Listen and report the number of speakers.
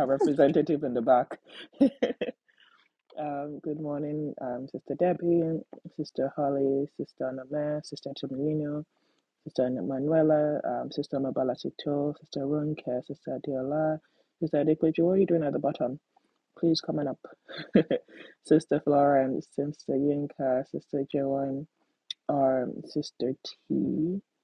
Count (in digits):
1